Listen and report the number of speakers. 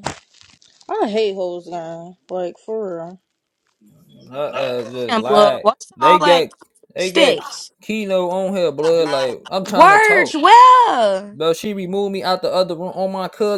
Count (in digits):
3